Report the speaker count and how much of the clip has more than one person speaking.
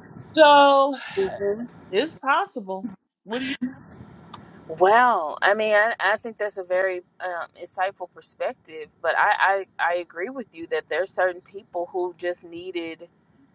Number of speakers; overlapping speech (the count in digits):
2, no overlap